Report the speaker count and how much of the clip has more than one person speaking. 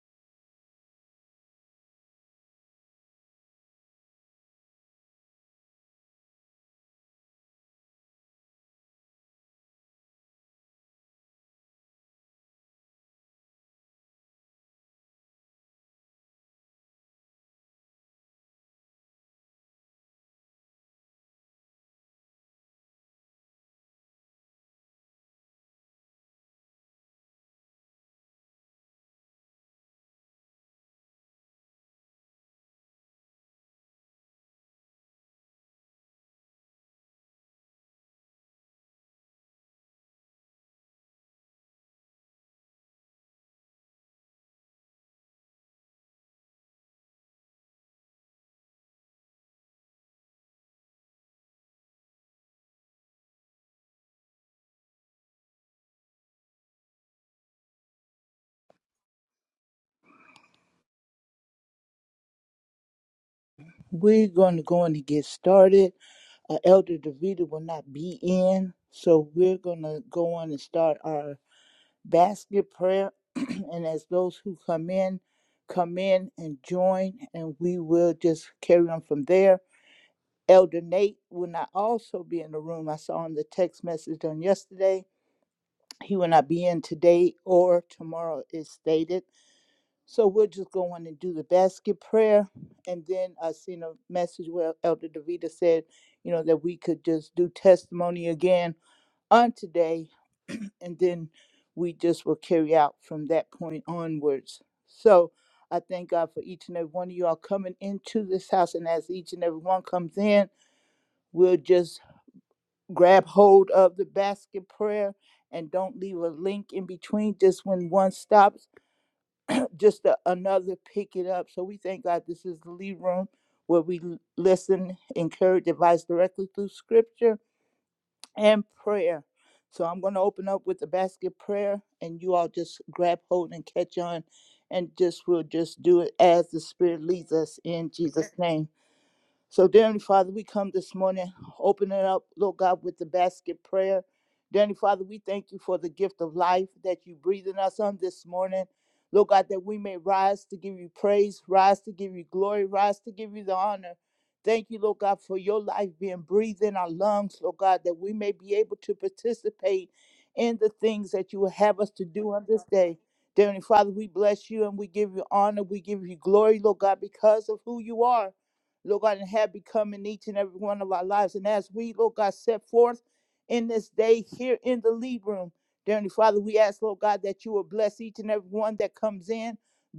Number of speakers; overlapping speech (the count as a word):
one, no overlap